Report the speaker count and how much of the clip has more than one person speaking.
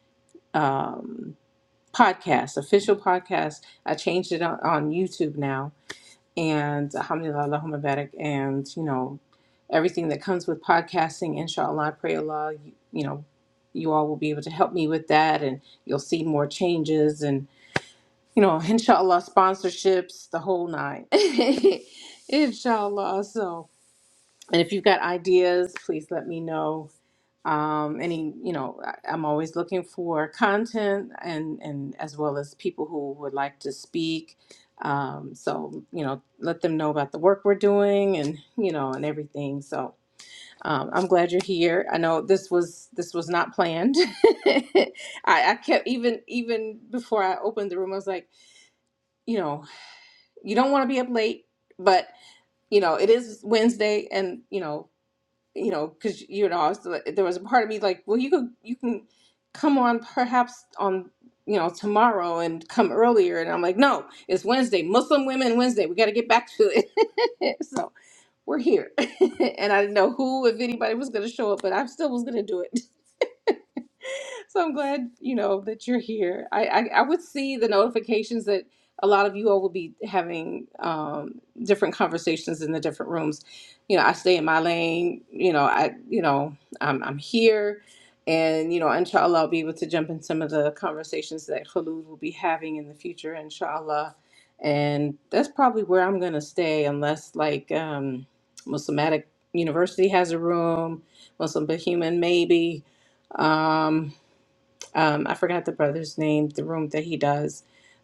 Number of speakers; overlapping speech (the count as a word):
one, no overlap